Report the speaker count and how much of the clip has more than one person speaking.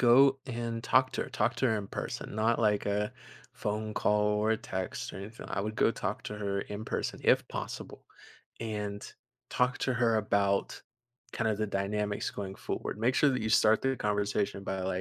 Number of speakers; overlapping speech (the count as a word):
one, no overlap